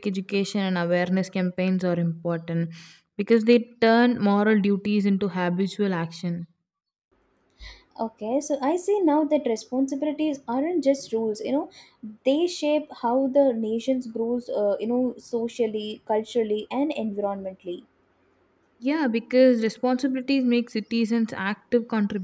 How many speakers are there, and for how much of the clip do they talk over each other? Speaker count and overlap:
two, no overlap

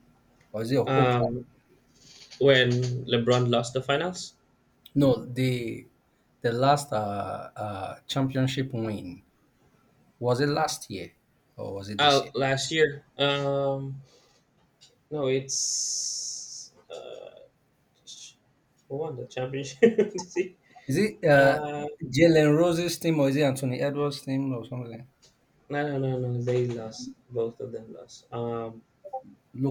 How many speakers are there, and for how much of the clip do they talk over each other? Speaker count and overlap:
two, about 4%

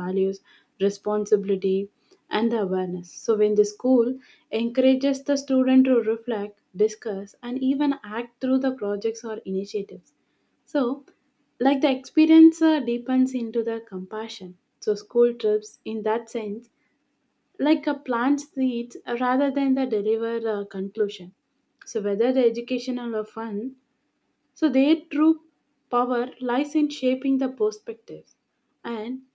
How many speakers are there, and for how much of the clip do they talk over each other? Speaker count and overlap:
one, no overlap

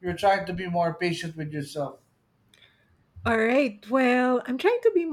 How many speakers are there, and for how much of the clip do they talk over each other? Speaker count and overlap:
two, no overlap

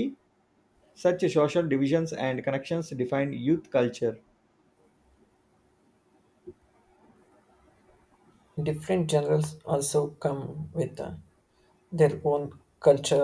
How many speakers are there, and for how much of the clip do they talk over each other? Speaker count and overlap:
two, no overlap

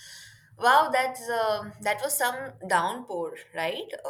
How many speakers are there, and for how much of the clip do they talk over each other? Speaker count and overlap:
one, no overlap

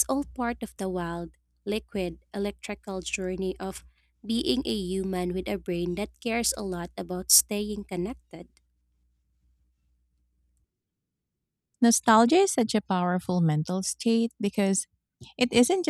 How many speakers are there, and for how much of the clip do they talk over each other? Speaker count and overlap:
two, no overlap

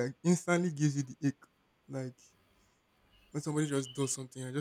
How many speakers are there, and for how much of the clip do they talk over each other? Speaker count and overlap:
one, no overlap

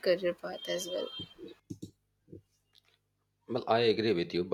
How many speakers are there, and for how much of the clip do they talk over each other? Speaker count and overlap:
two, no overlap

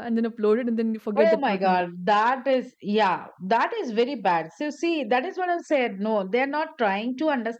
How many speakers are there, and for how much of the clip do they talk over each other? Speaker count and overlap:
two, about 9%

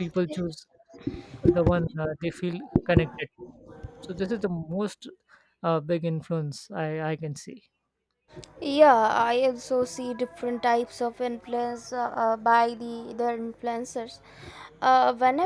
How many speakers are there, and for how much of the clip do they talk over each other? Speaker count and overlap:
two, no overlap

